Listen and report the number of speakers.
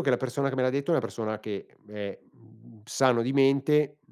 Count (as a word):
one